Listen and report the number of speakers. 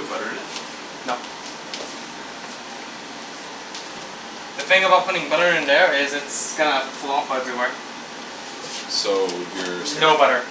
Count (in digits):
2